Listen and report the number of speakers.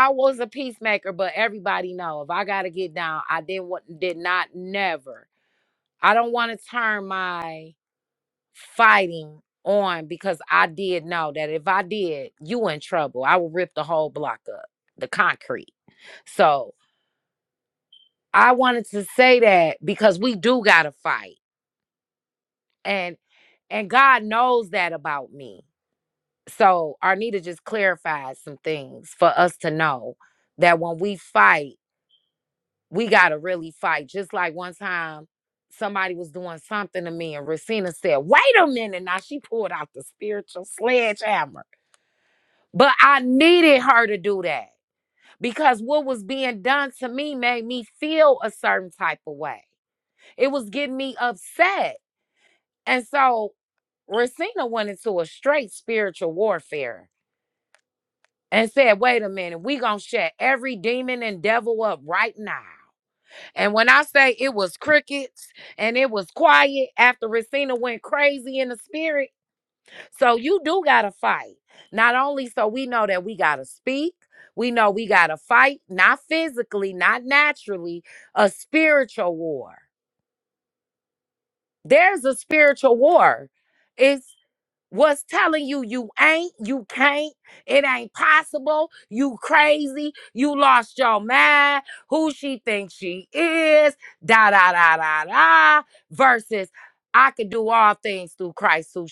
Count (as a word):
one